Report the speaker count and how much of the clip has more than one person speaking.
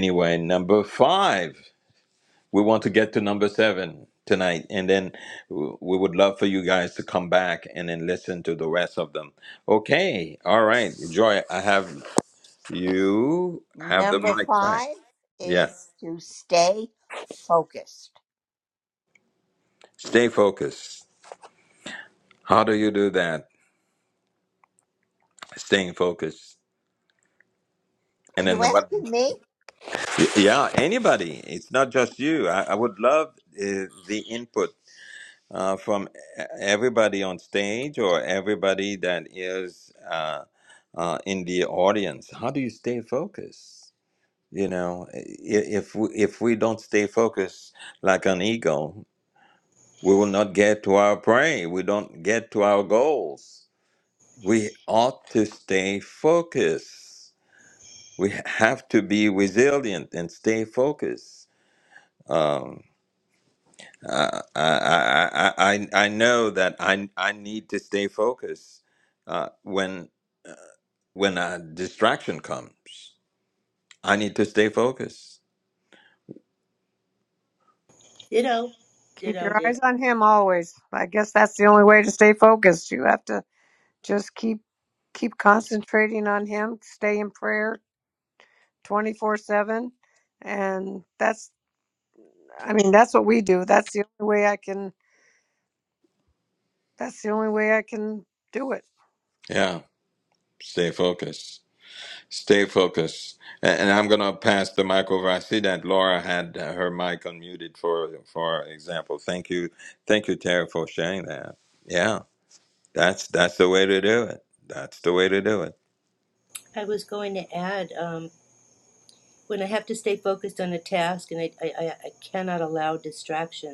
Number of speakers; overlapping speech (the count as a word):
four, about 2%